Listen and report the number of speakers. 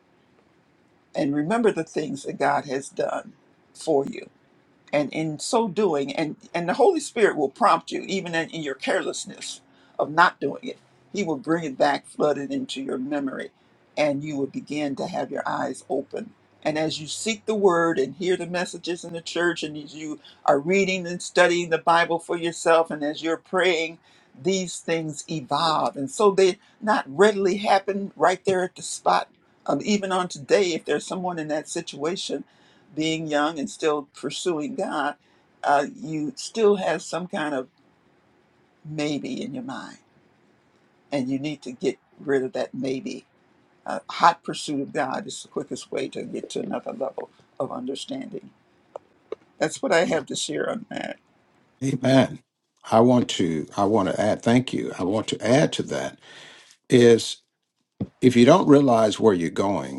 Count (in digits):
2